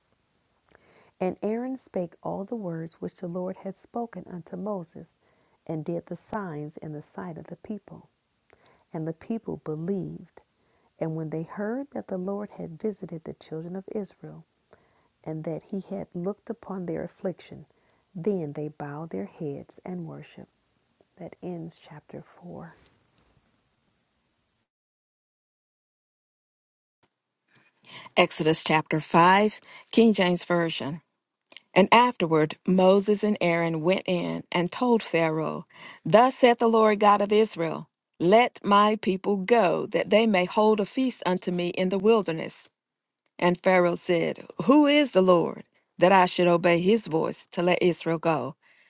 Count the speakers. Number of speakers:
two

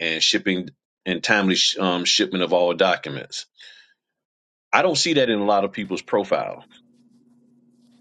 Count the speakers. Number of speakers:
one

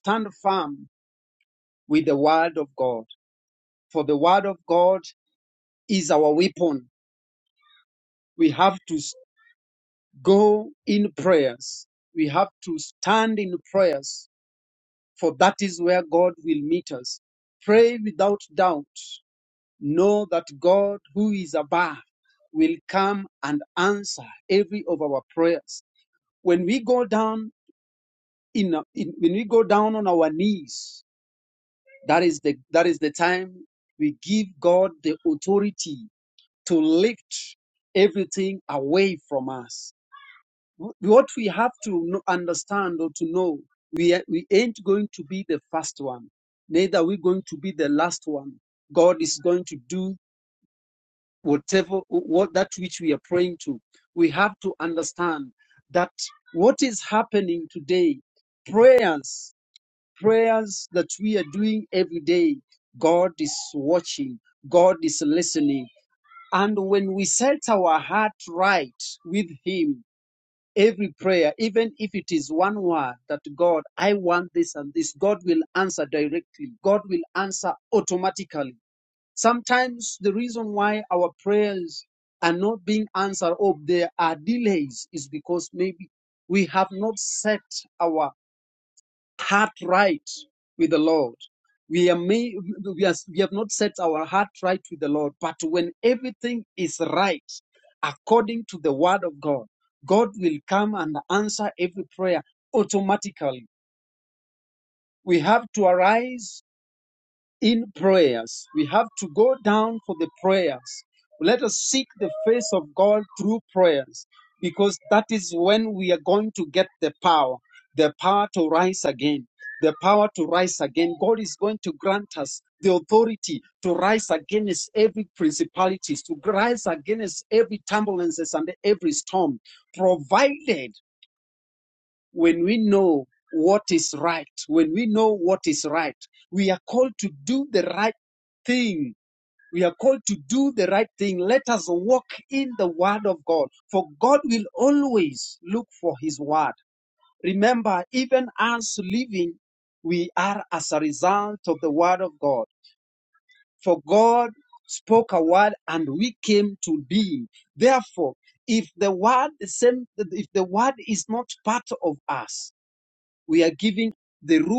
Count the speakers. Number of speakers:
one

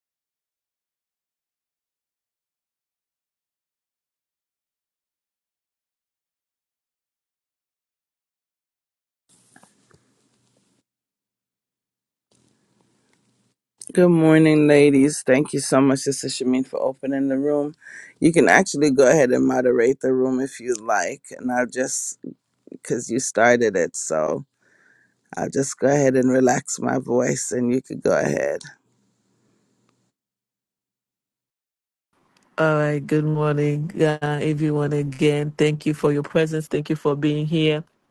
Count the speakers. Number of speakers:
two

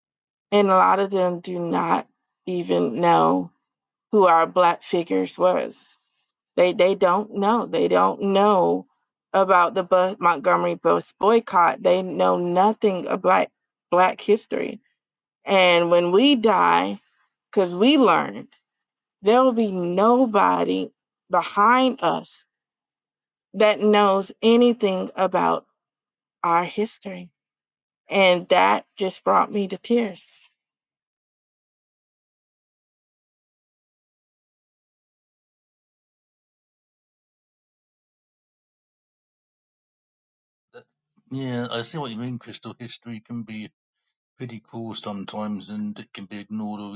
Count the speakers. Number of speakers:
two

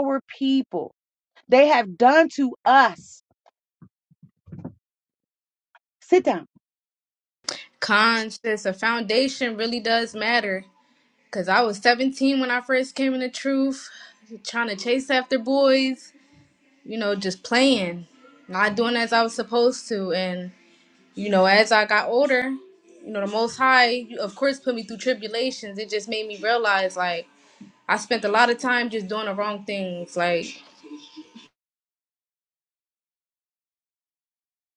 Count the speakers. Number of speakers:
two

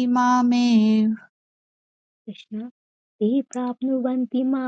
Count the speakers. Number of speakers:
two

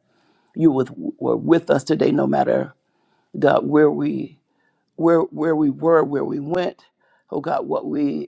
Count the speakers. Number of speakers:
one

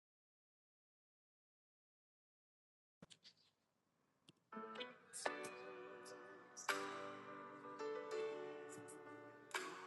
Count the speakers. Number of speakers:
zero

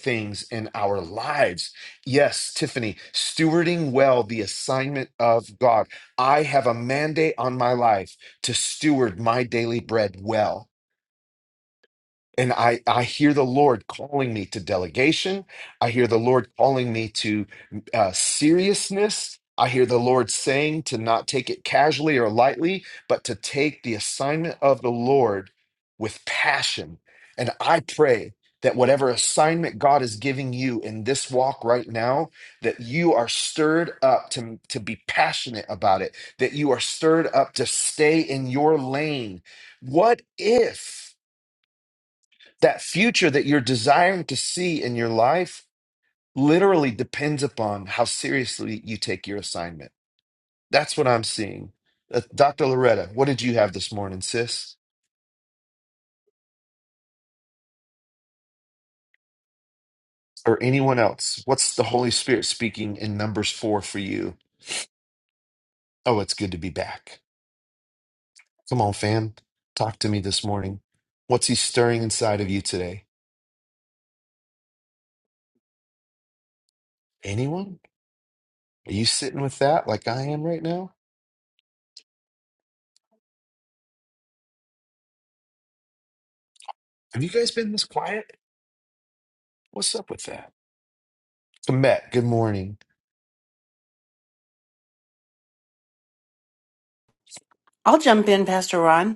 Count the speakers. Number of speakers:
two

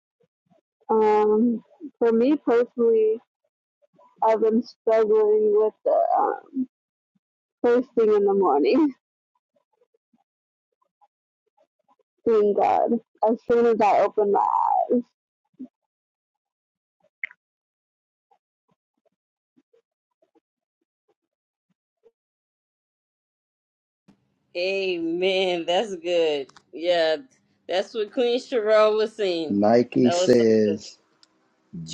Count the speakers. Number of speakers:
three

